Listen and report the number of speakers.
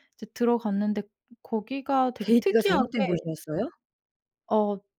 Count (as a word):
two